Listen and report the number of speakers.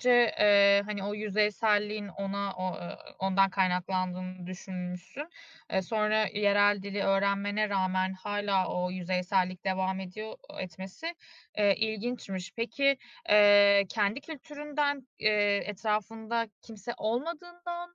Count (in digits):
1